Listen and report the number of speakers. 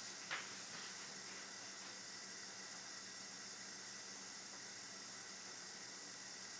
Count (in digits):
0